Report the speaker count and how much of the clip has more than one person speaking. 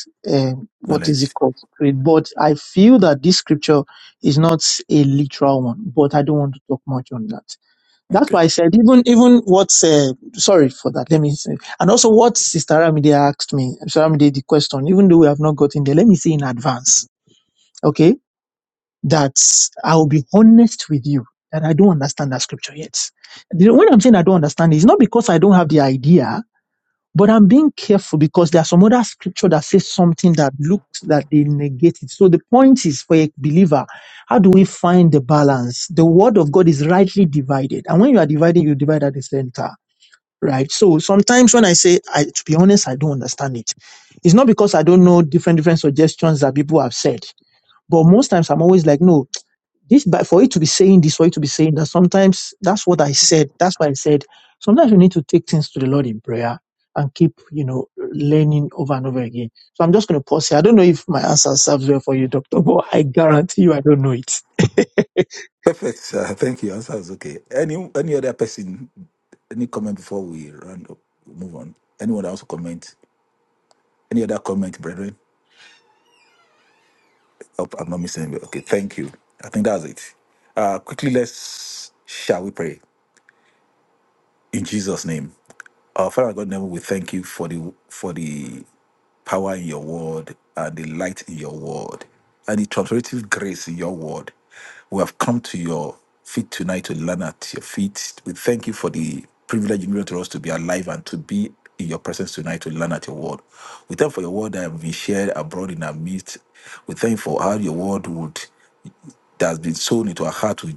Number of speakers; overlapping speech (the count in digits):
2, about 1%